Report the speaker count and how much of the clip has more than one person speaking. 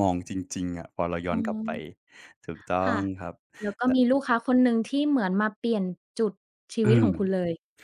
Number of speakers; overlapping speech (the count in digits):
2, about 10%